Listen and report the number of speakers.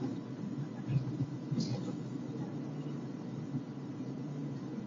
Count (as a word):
zero